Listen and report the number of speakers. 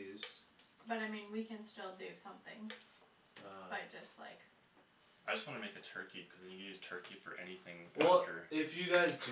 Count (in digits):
3